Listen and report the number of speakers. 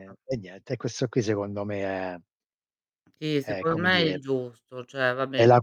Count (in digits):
2